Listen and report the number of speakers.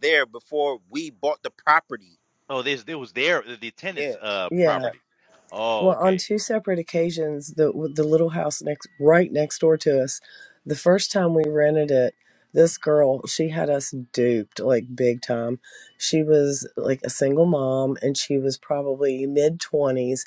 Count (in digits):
3